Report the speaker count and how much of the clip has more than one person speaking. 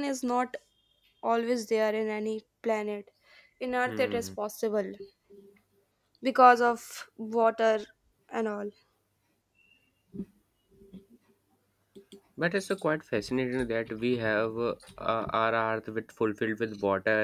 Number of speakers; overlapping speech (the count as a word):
two, about 3%